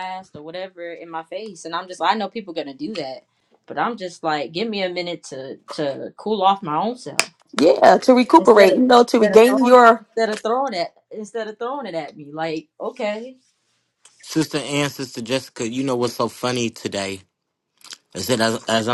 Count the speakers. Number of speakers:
three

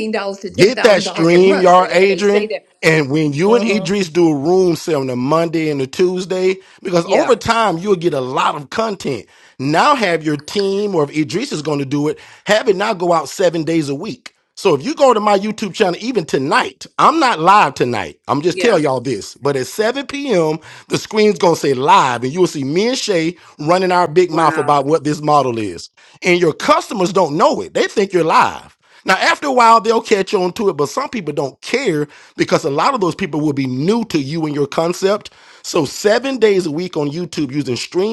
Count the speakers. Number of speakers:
two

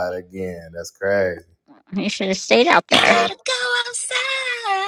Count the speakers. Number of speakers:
three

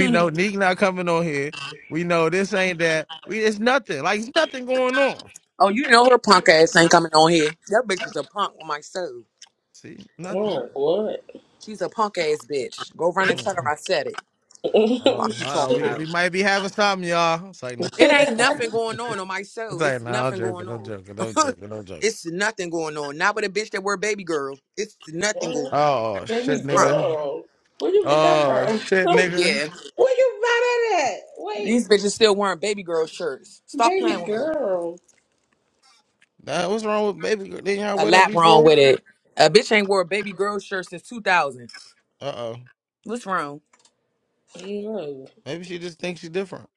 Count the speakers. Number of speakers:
three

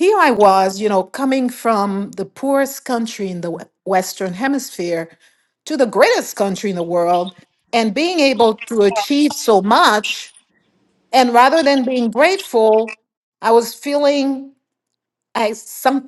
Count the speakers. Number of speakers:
one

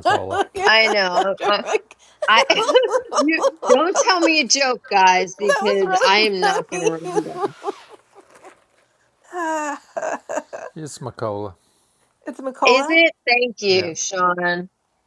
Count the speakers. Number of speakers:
three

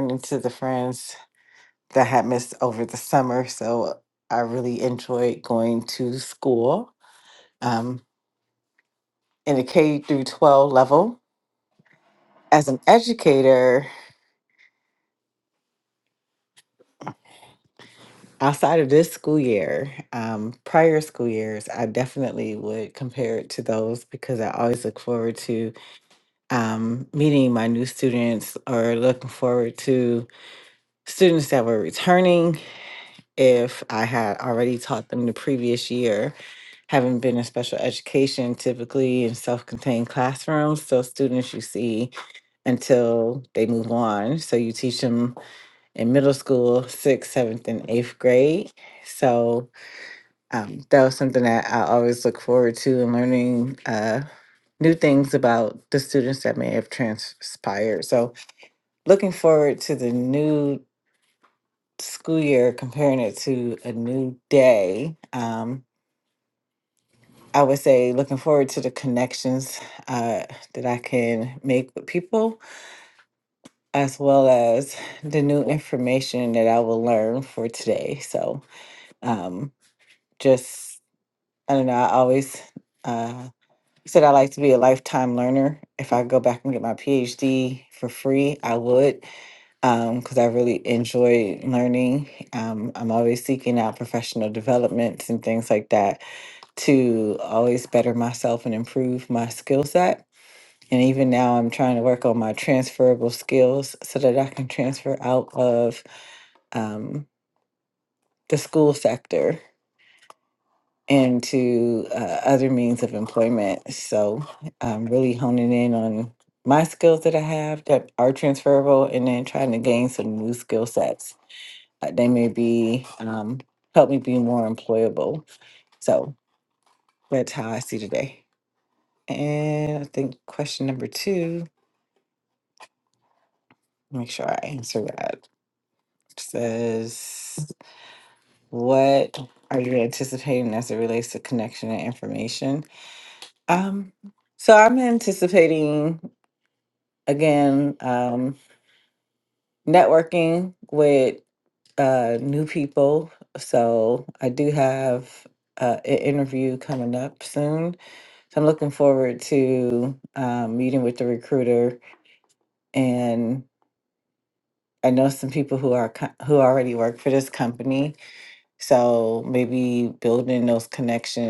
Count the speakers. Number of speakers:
one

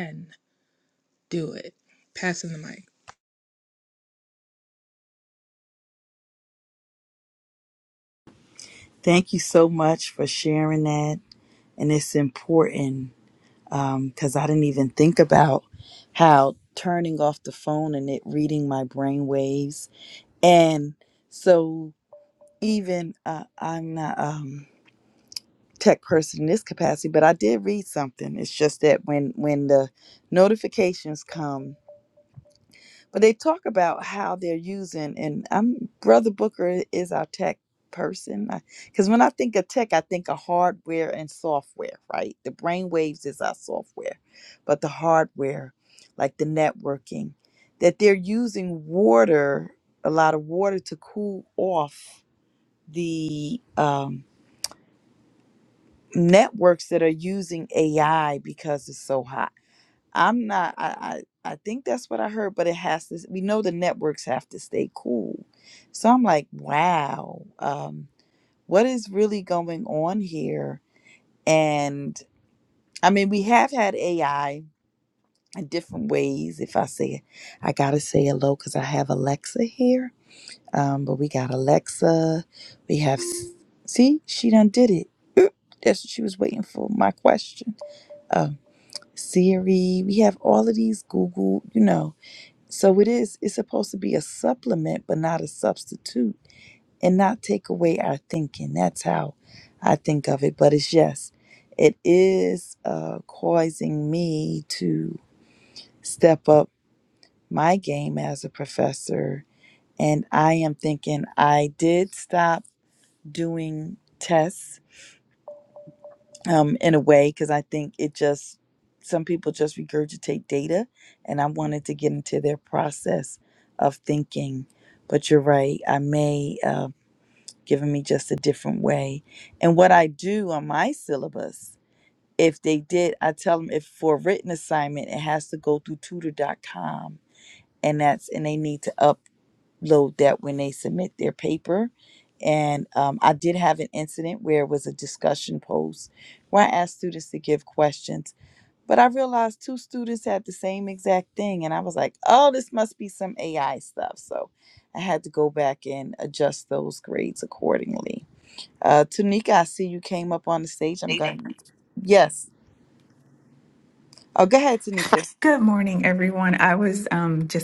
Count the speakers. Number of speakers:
three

